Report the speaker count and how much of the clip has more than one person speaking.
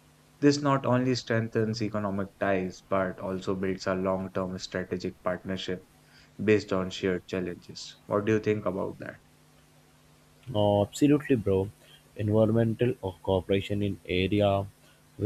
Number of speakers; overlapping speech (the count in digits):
2, no overlap